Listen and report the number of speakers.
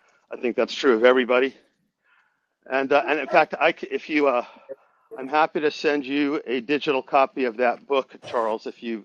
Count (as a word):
one